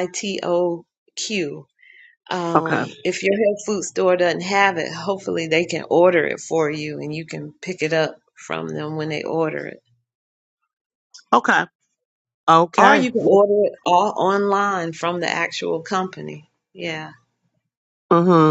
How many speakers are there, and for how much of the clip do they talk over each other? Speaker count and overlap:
two, about 3%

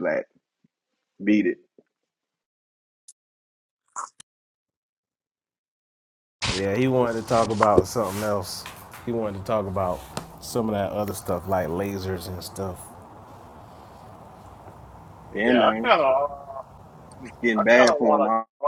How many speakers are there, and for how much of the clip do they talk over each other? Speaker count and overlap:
three, about 6%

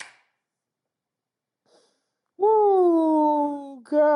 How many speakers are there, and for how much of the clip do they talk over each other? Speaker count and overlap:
one, no overlap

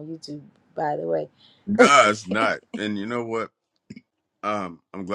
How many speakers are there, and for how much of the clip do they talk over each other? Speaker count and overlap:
two, about 12%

